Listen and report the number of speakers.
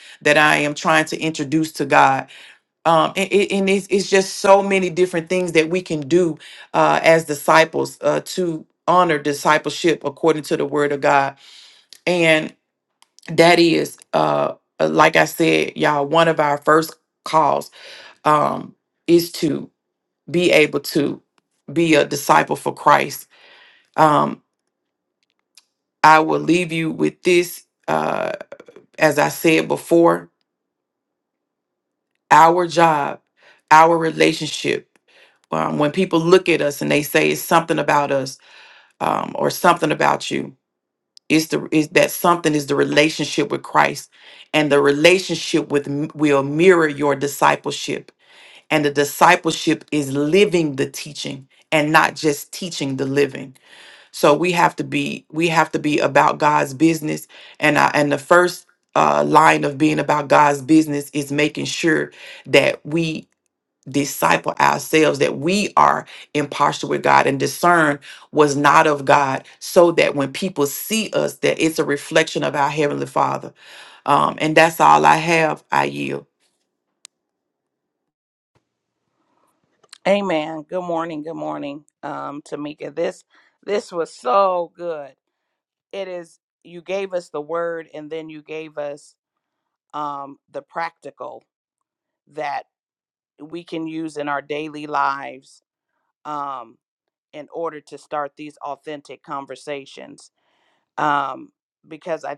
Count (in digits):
2